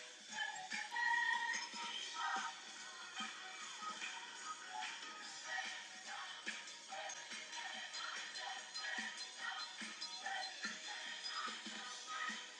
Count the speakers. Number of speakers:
0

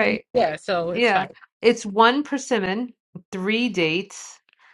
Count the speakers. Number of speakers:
2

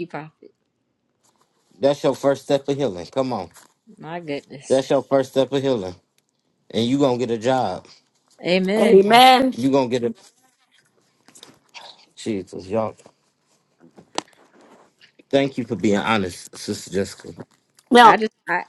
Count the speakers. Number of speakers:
3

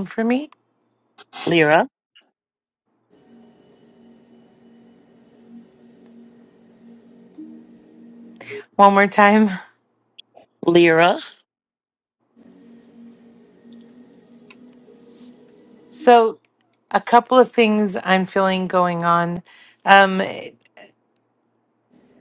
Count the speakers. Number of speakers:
2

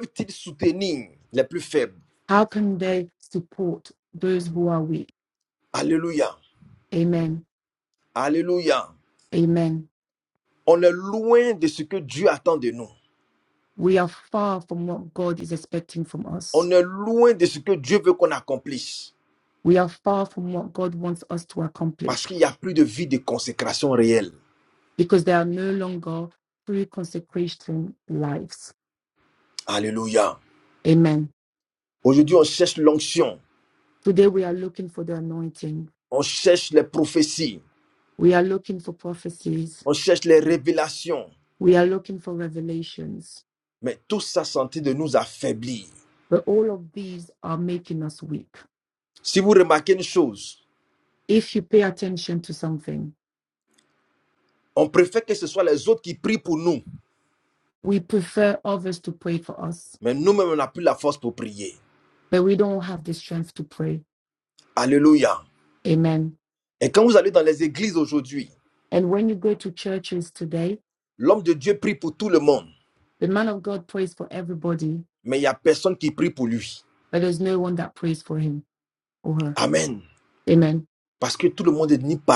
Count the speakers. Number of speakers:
2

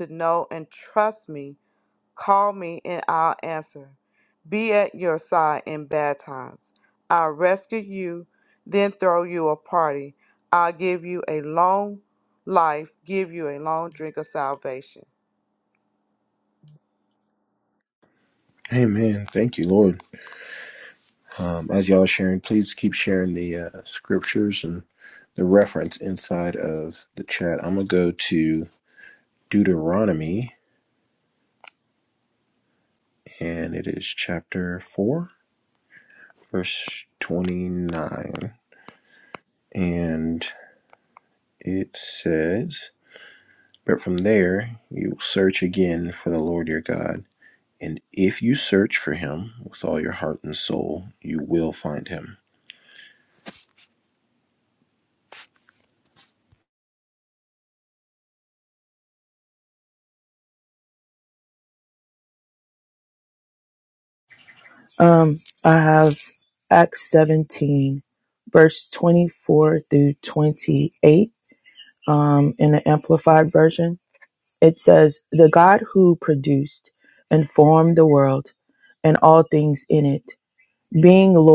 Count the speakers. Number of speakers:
3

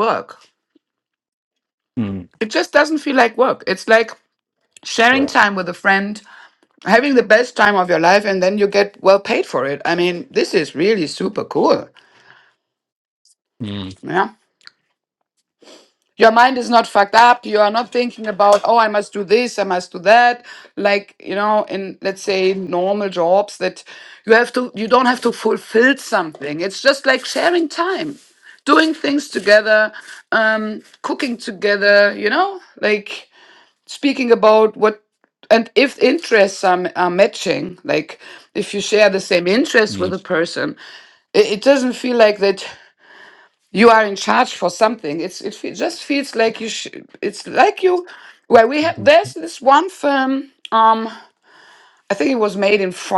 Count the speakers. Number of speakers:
2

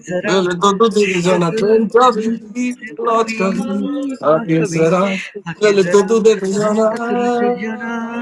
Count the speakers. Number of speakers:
2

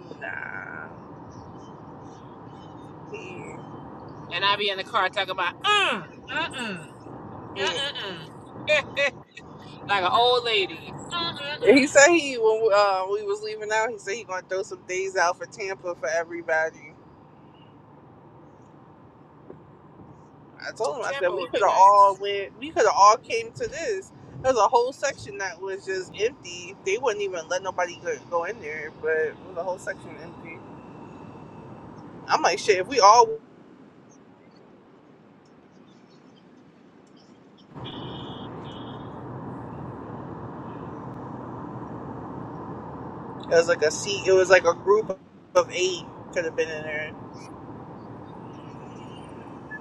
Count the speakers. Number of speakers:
2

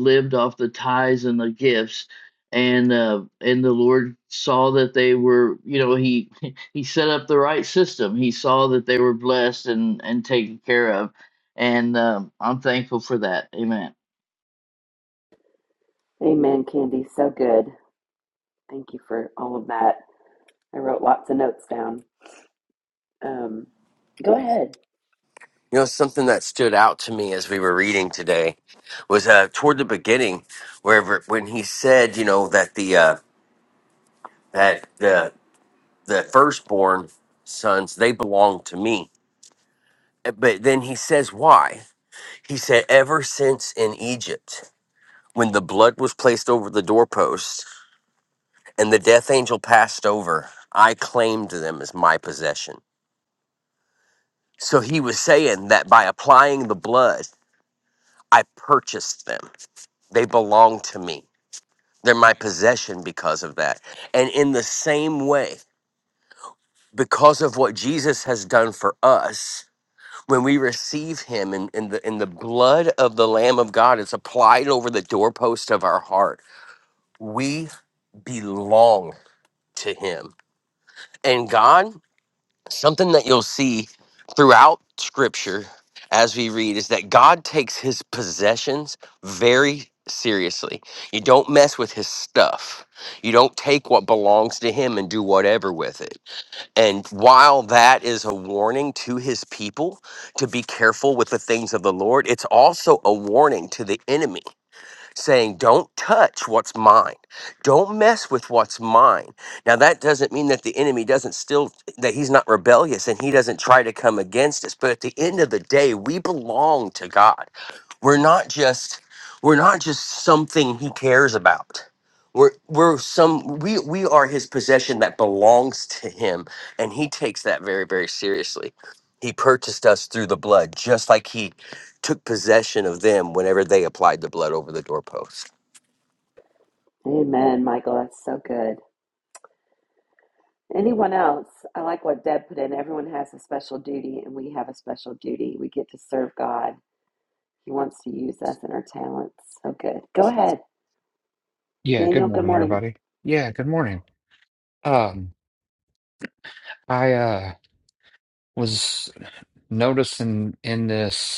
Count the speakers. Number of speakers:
4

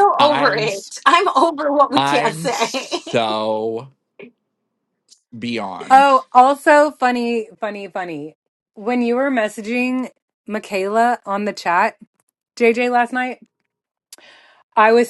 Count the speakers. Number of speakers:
3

